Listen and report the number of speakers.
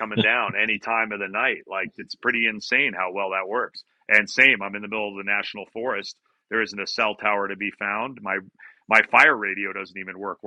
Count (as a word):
one